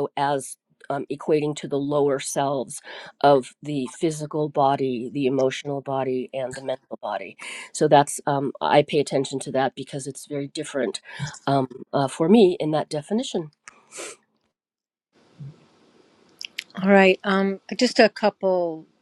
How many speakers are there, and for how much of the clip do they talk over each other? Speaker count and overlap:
two, no overlap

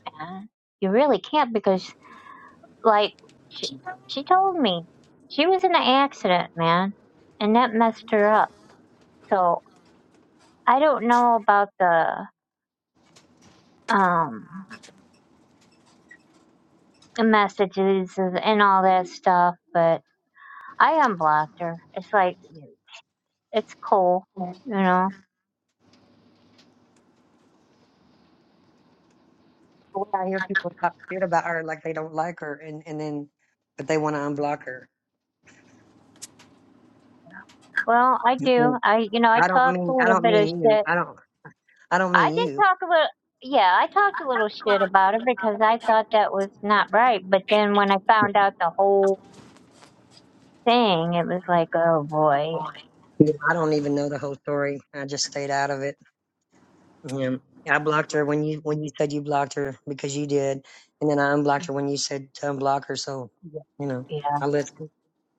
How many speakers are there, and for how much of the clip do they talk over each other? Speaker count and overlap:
two, about 4%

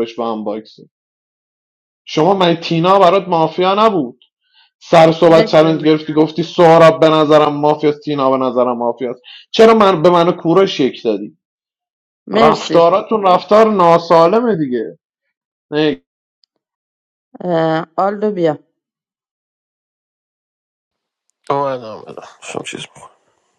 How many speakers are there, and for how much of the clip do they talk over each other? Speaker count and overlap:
three, about 6%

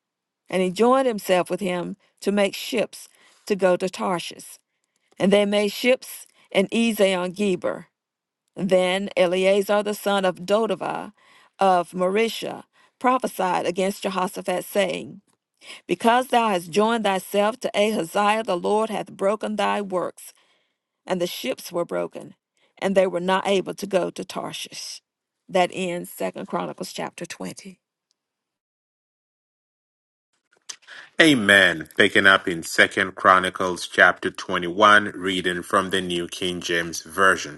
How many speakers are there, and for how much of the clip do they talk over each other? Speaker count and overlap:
two, no overlap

